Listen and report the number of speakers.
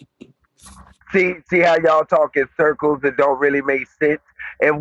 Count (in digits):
1